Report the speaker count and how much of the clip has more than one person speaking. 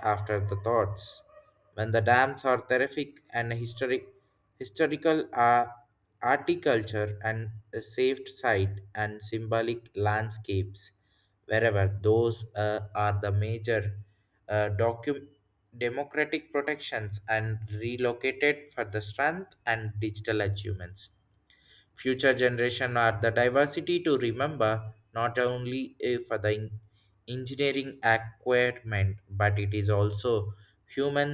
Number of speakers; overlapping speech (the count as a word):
one, no overlap